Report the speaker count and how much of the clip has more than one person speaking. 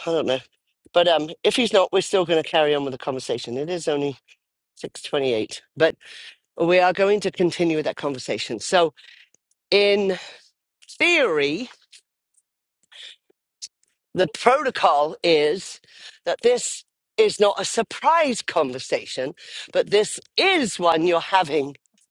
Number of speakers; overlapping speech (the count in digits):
1, no overlap